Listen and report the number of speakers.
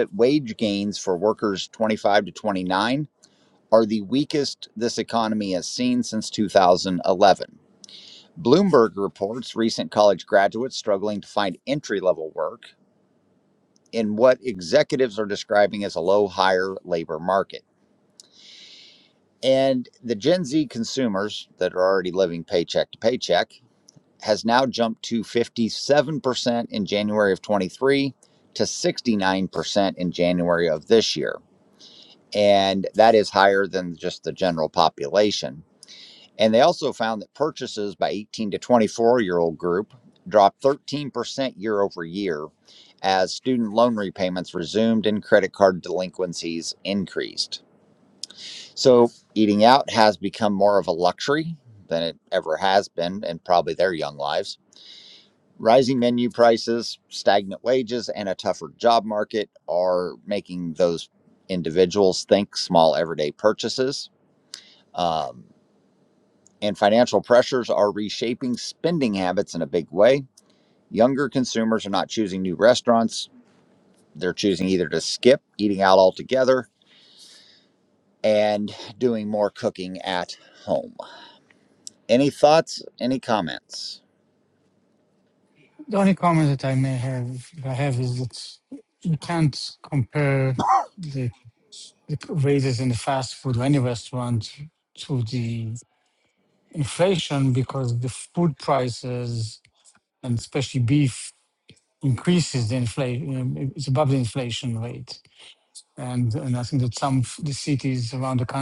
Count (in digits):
2